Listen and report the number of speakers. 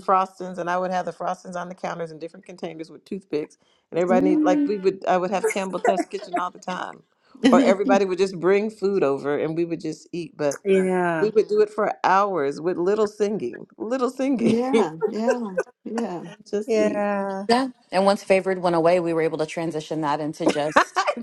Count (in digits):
4